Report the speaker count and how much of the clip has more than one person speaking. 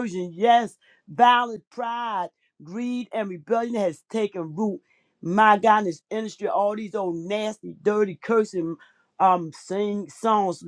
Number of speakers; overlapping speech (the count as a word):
one, no overlap